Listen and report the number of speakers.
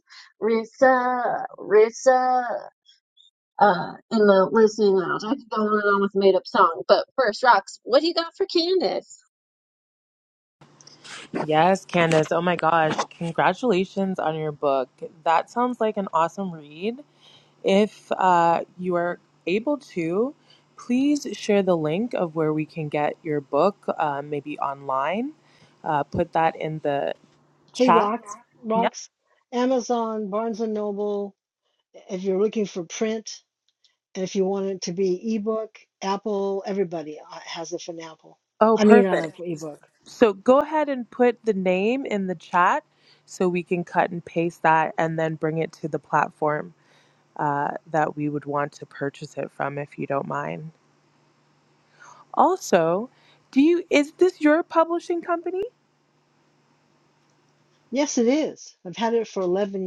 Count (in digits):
3